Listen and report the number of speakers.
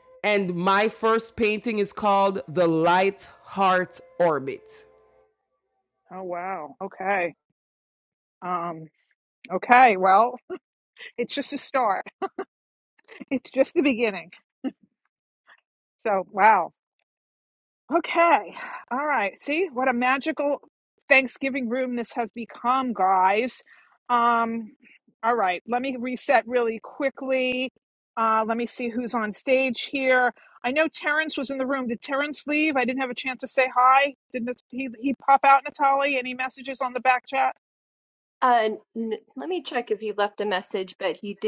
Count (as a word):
three